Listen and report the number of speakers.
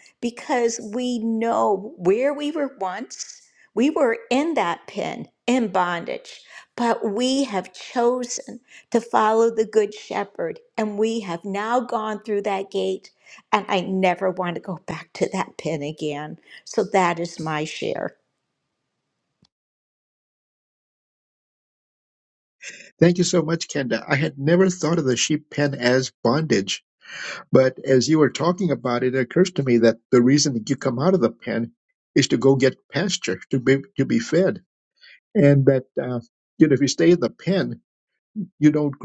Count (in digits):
2